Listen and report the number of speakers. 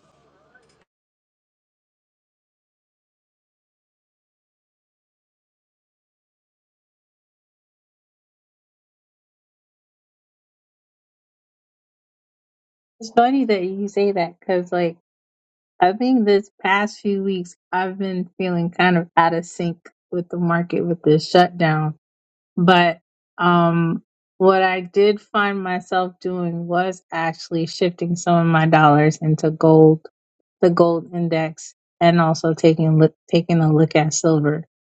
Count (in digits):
1